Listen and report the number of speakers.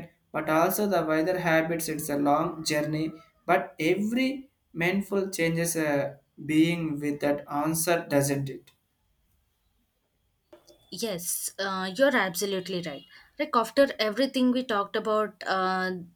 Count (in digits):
2